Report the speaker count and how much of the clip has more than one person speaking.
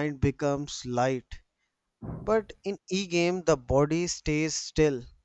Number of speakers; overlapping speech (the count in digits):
1, no overlap